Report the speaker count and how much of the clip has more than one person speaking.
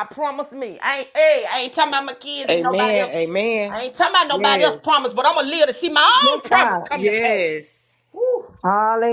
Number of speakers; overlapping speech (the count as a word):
three, about 27%